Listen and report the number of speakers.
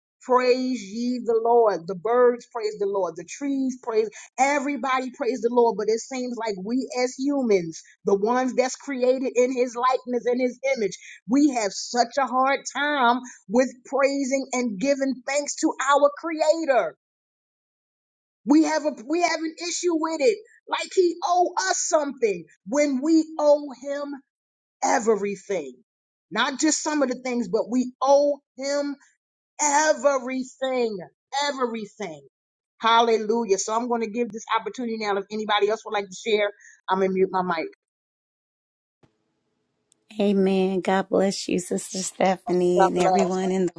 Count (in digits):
2